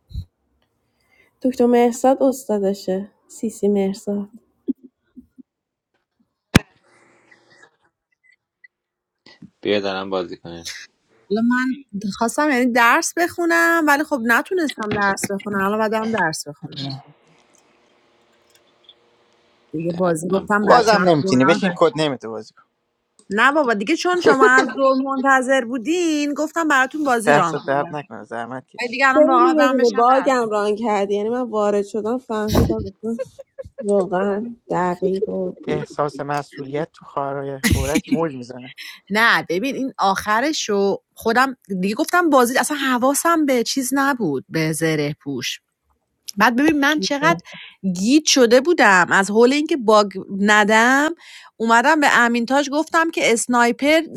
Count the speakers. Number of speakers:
4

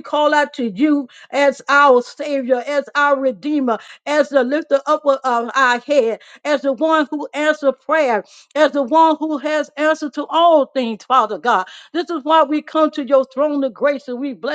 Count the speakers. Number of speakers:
1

